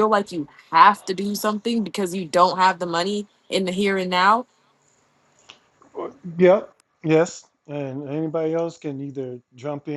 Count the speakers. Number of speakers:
2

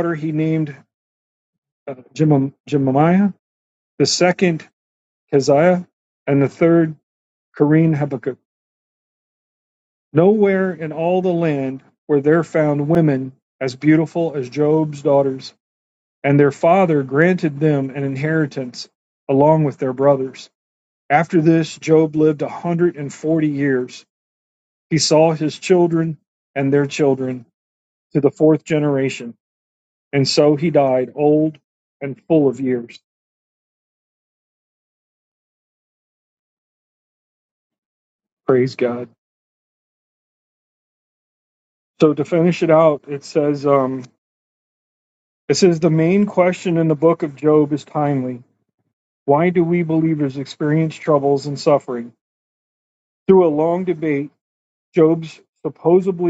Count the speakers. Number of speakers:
1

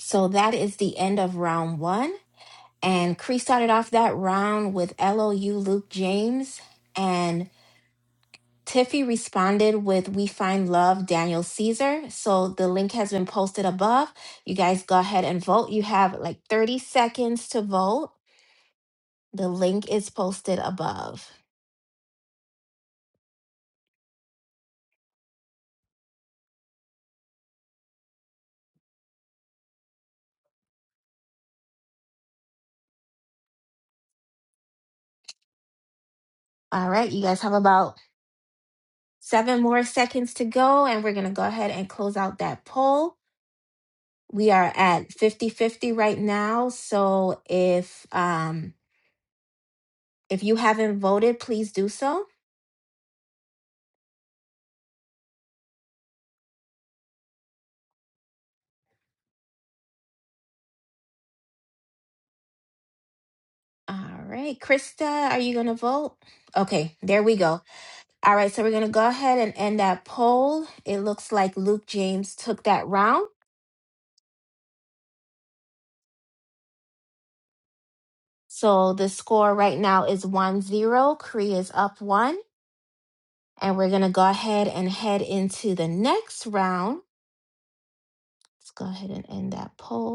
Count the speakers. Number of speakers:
1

